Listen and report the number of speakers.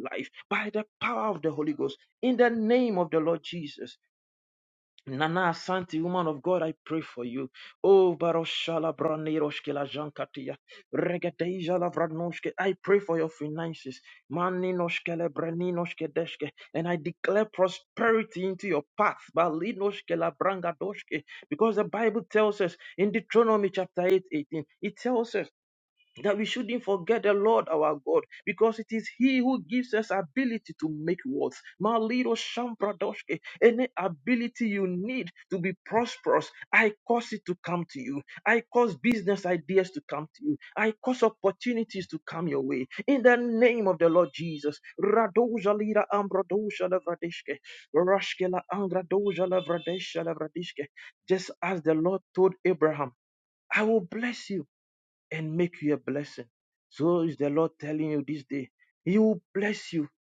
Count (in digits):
1